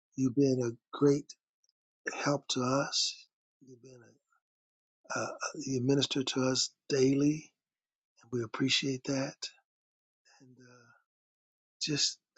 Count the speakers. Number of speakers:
1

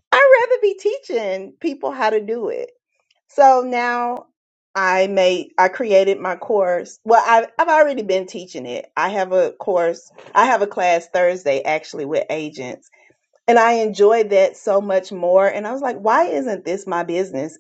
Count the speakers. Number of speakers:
1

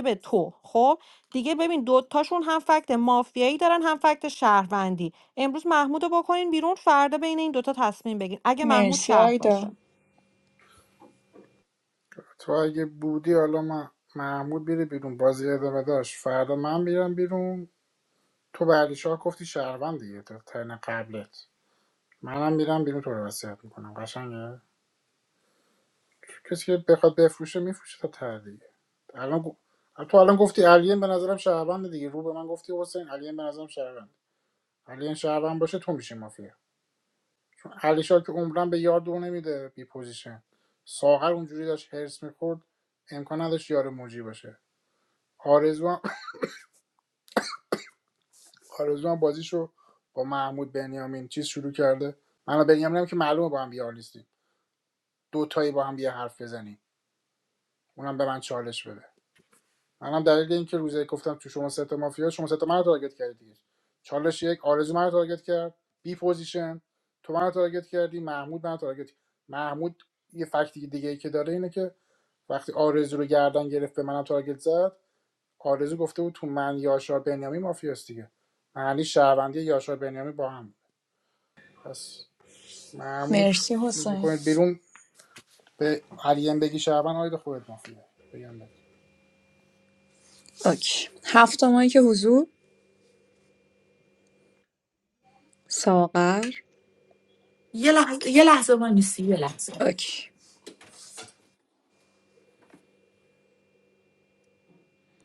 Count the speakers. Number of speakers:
4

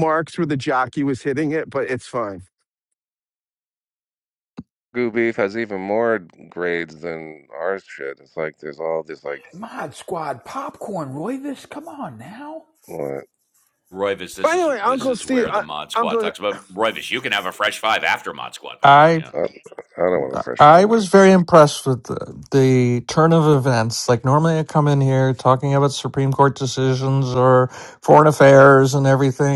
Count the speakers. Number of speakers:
5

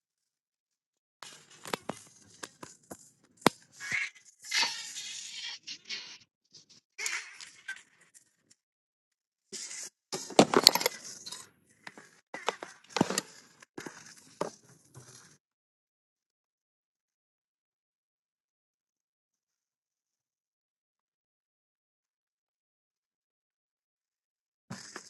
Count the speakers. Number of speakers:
0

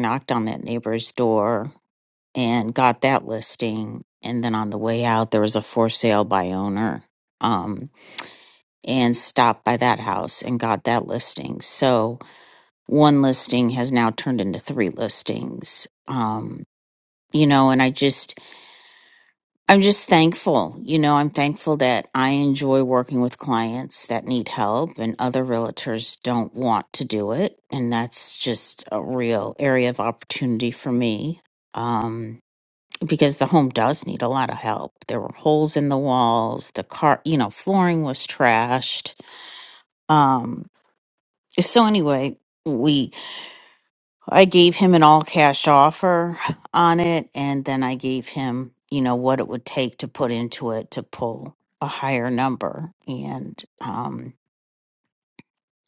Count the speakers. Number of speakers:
1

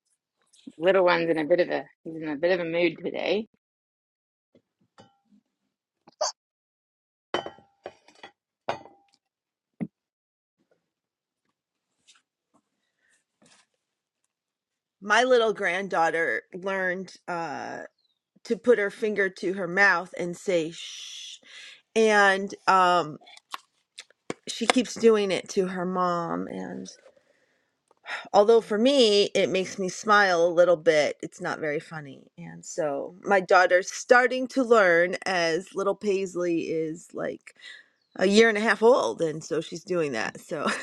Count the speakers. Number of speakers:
2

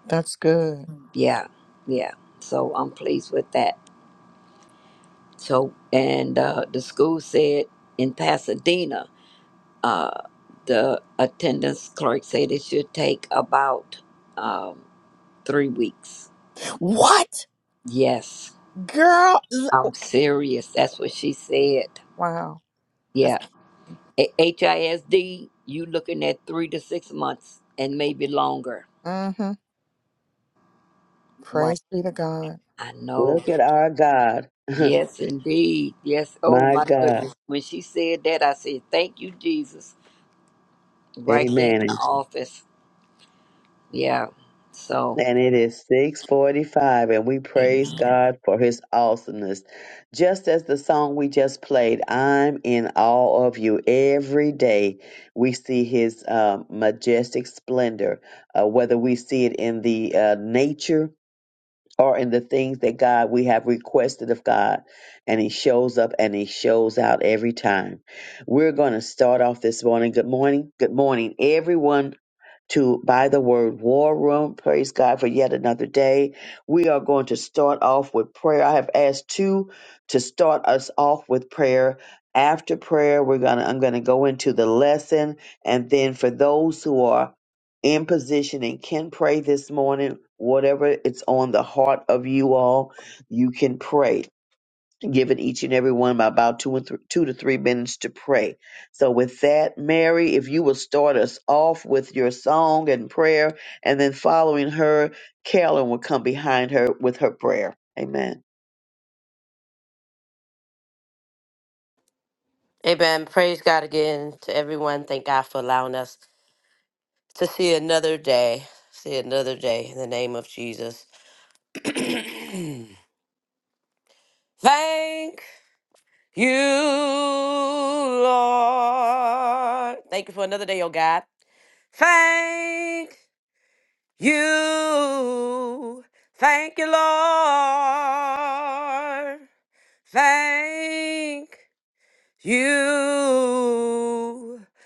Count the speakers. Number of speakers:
4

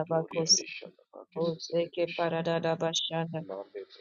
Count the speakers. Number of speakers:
2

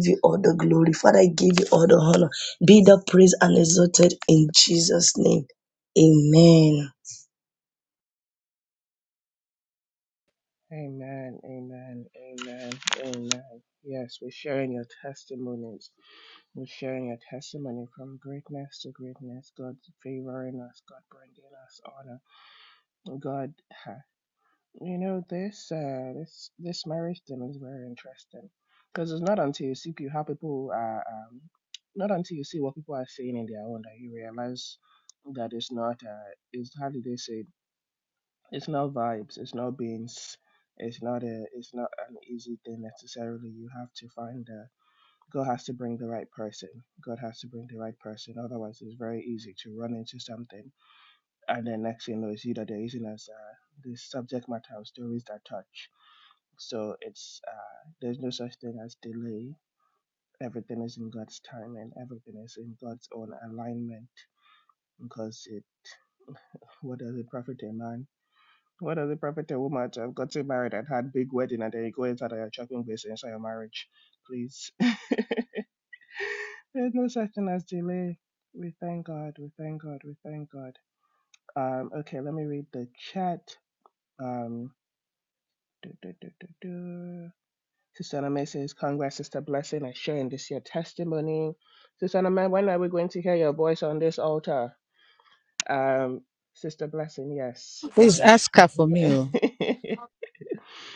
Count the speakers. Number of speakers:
3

